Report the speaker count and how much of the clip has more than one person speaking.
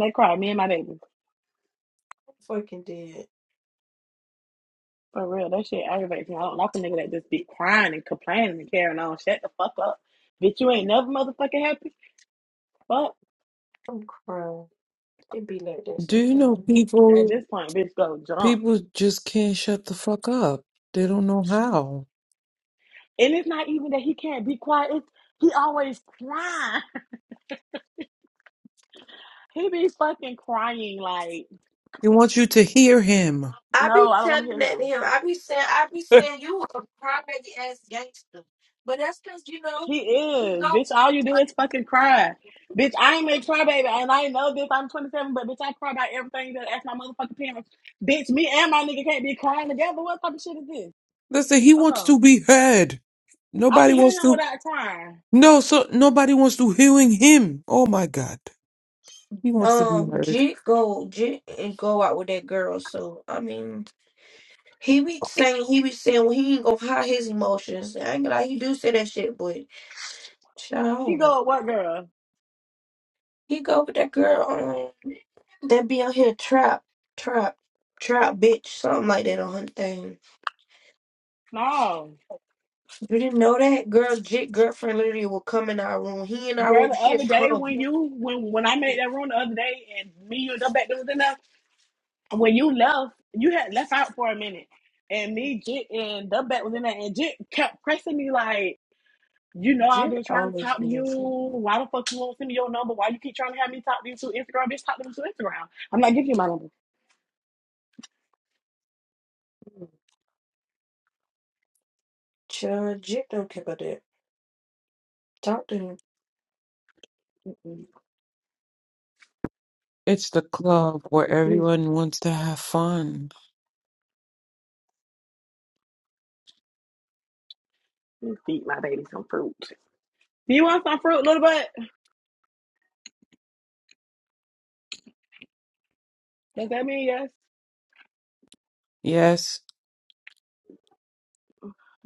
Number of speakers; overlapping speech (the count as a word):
three, about 6%